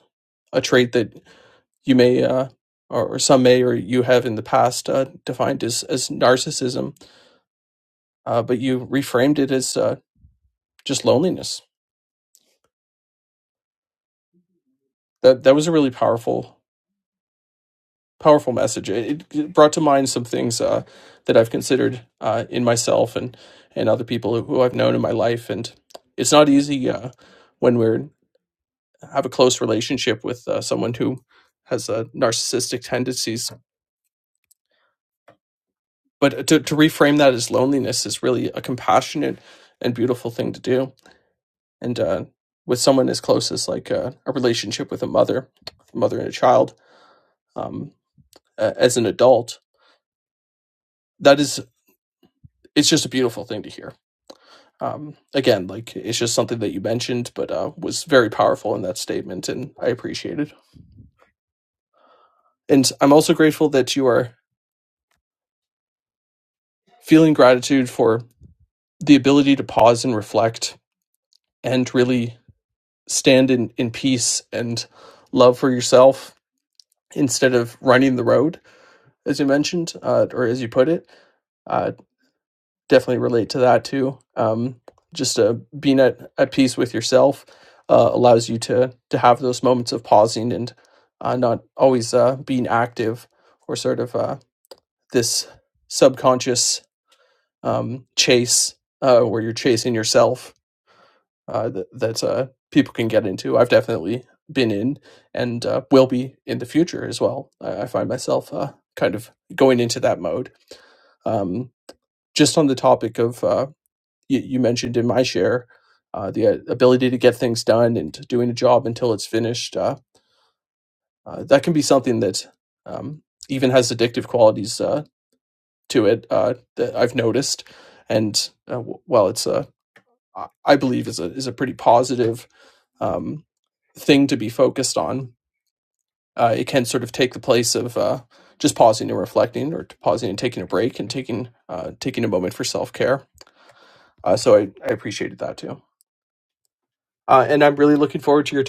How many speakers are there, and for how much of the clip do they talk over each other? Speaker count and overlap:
1, no overlap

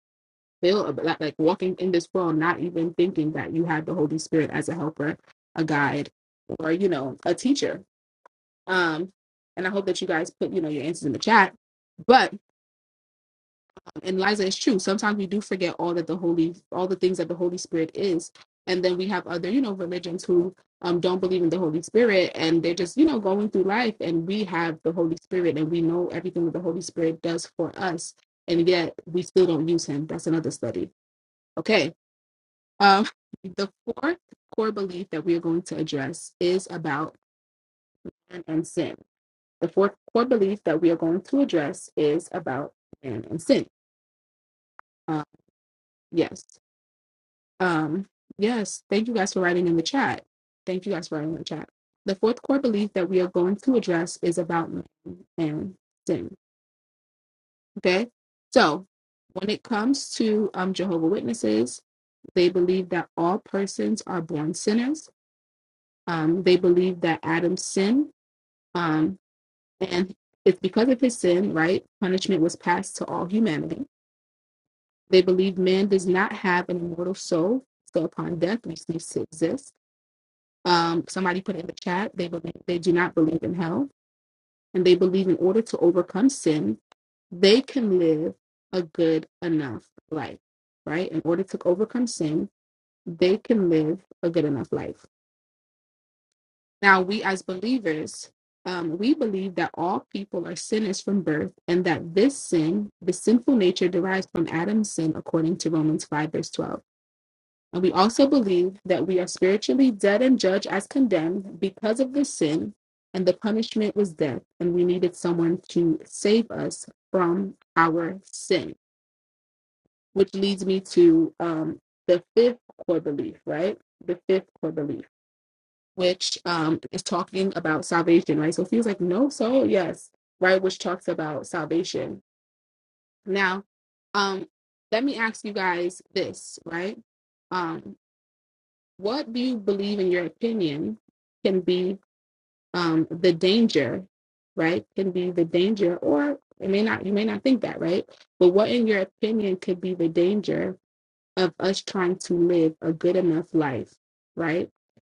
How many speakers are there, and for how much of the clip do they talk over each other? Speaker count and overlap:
1, no overlap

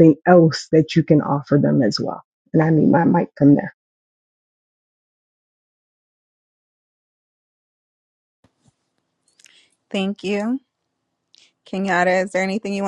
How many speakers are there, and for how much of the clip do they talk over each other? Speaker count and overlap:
2, no overlap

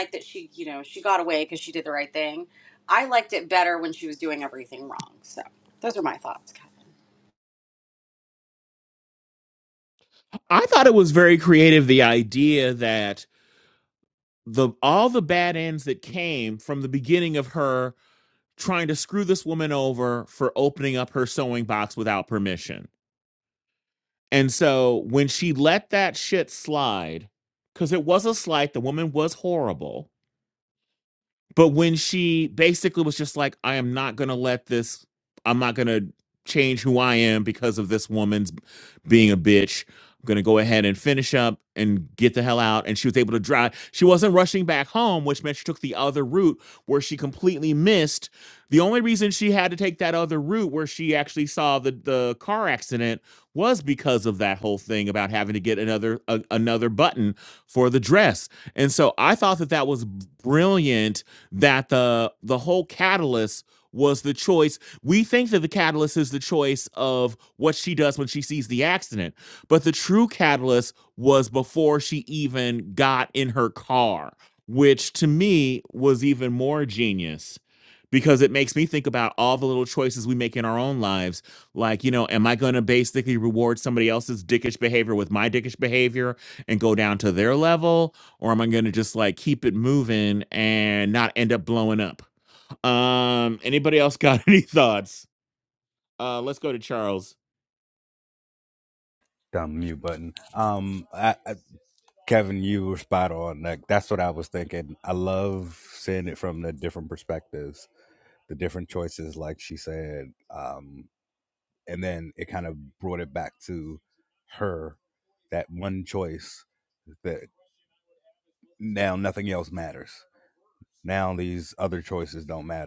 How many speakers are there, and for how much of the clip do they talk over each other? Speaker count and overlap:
3, no overlap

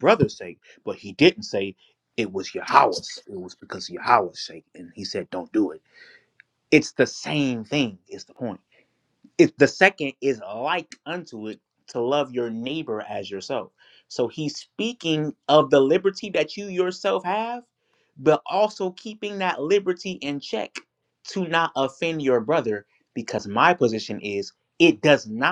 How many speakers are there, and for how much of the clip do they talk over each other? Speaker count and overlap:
1, no overlap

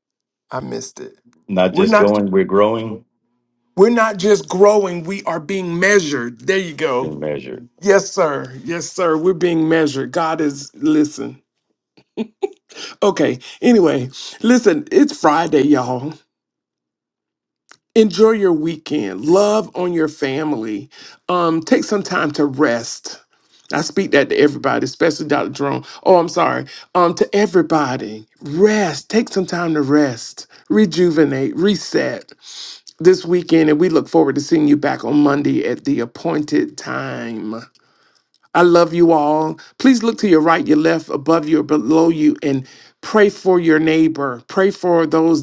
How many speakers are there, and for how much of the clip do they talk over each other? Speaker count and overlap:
2, about 1%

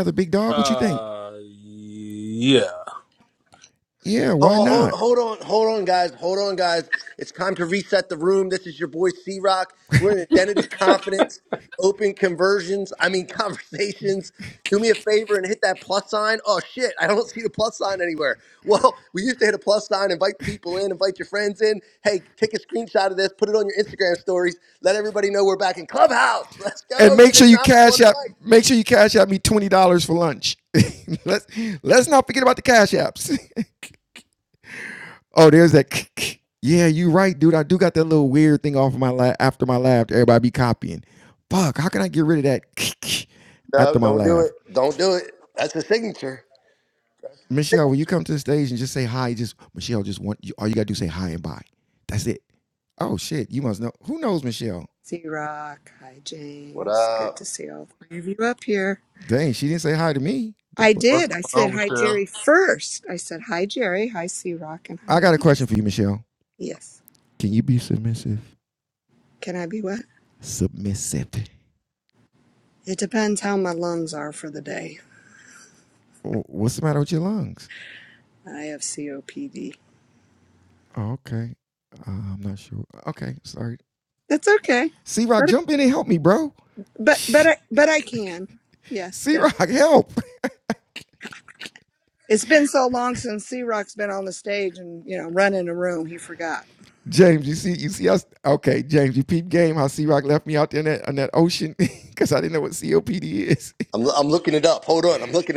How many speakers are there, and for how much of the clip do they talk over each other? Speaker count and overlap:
4, about 6%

